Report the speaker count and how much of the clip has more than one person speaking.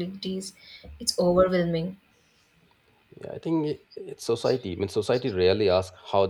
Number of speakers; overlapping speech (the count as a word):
two, no overlap